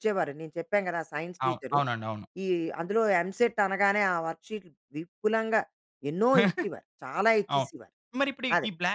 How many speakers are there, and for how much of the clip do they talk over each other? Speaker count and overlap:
2, about 8%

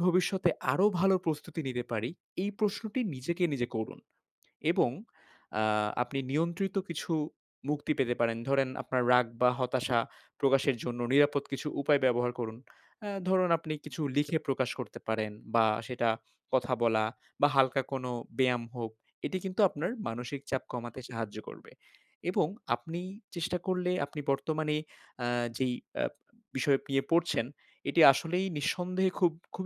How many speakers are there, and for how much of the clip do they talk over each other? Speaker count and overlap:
1, no overlap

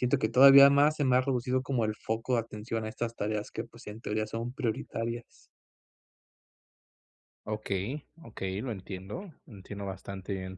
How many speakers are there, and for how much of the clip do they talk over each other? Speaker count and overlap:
2, no overlap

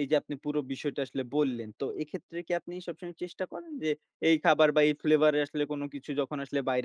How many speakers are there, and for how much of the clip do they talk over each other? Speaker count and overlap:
1, no overlap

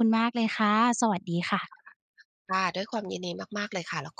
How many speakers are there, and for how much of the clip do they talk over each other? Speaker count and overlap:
2, no overlap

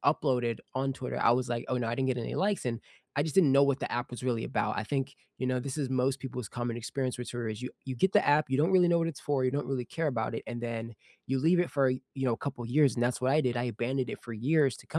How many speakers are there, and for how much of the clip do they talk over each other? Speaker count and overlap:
1, no overlap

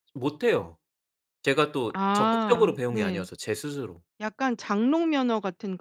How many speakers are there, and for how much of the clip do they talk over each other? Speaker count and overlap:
2, about 23%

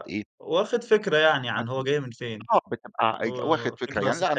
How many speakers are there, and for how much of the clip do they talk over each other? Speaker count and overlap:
2, about 35%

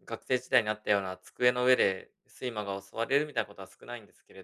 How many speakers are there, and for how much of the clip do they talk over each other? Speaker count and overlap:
1, no overlap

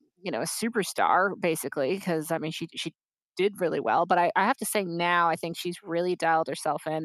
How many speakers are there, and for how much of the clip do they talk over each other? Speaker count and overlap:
1, no overlap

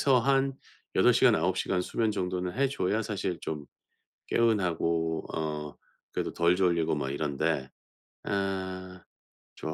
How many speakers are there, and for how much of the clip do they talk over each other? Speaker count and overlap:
1, no overlap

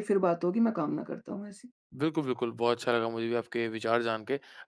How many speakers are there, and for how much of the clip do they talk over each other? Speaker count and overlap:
2, no overlap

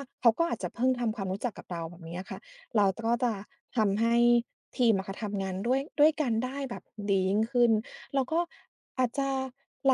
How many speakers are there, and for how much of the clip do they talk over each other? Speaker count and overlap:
1, no overlap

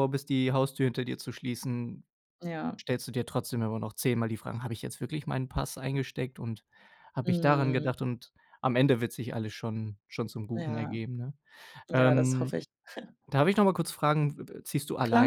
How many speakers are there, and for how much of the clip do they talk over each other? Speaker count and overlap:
2, about 13%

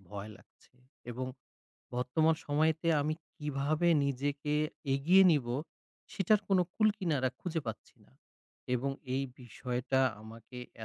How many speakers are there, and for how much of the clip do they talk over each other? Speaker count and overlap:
1, no overlap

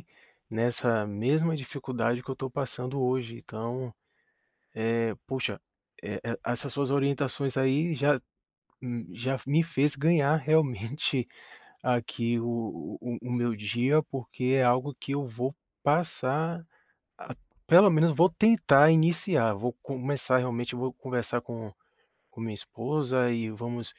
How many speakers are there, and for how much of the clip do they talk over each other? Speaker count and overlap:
1, no overlap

